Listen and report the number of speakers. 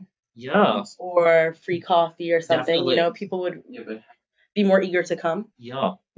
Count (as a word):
three